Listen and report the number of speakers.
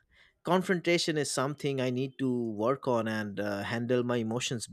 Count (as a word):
one